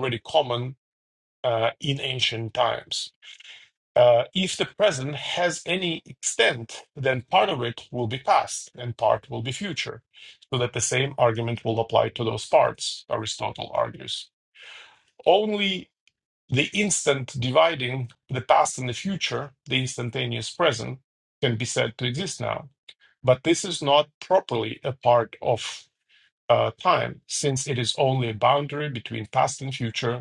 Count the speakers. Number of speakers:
1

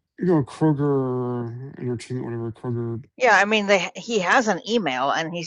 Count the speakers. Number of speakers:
2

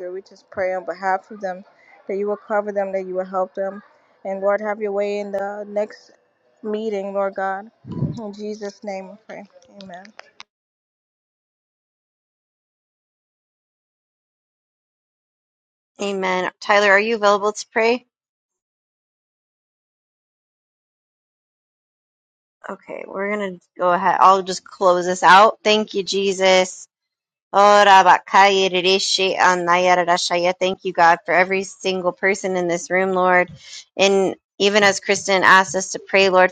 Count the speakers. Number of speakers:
2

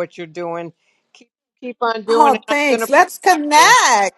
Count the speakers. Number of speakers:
2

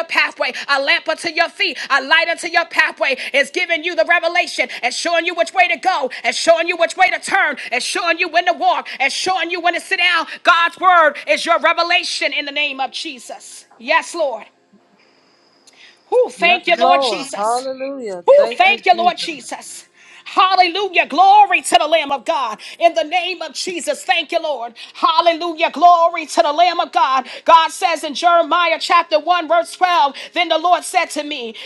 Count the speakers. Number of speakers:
2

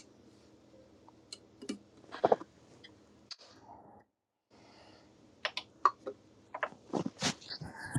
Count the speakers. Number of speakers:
0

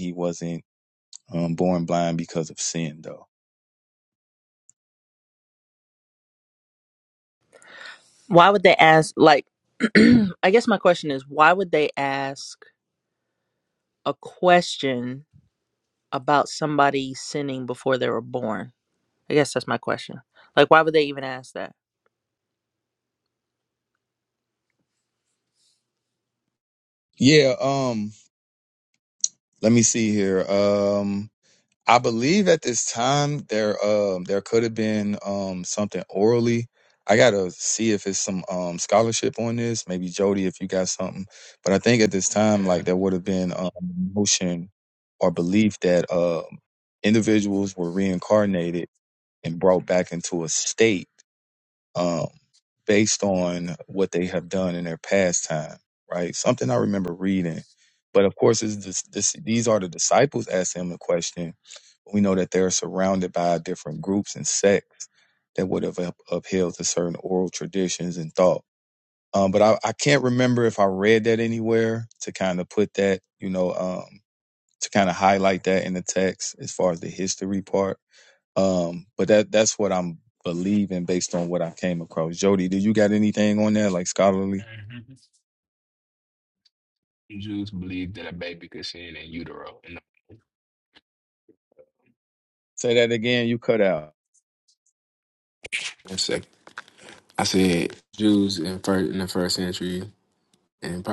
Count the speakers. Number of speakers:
3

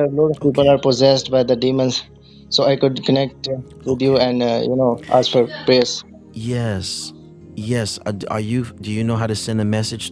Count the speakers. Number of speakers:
2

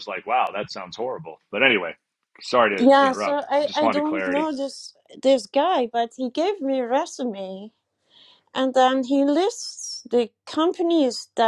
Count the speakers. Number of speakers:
2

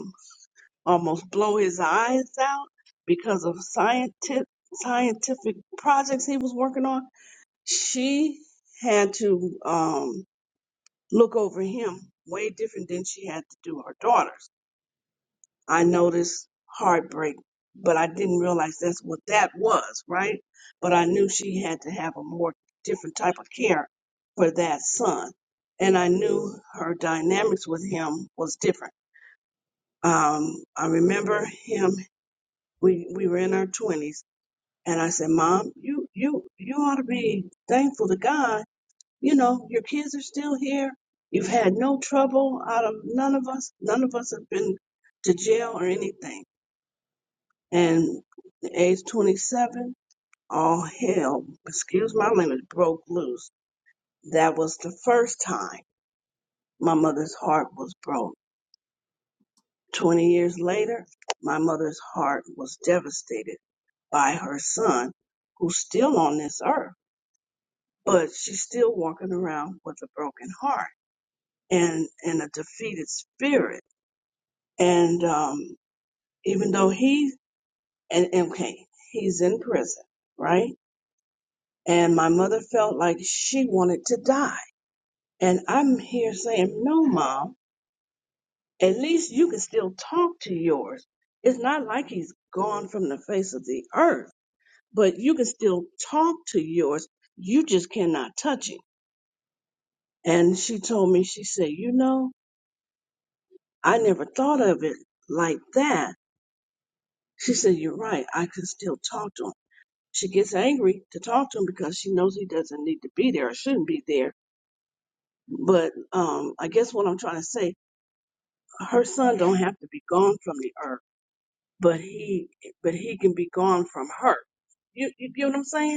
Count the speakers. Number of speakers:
1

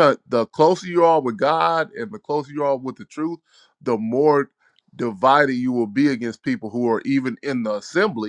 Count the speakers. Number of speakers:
1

